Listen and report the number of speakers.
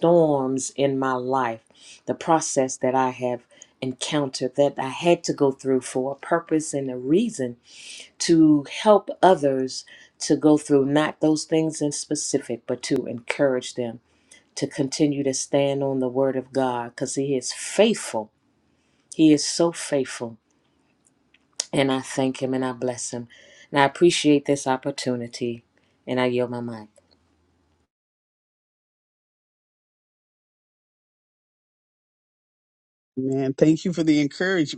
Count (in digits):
2